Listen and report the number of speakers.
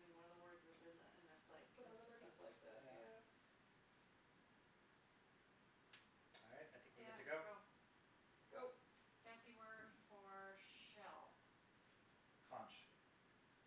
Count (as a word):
three